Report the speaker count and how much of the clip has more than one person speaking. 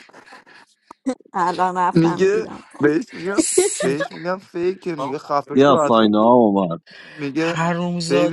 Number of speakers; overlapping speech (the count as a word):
four, about 22%